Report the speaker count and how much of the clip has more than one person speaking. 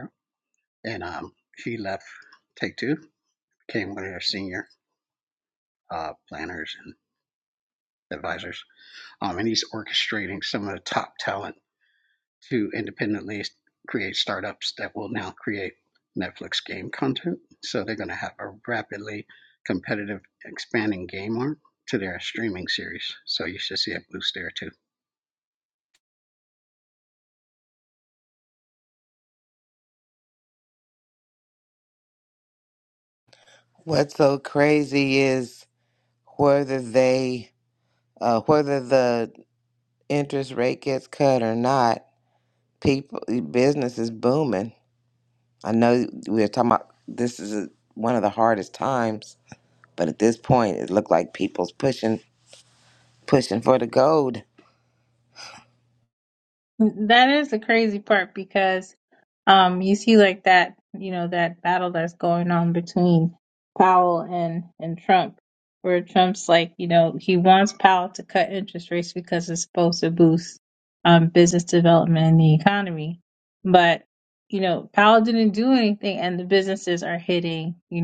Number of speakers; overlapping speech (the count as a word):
three, no overlap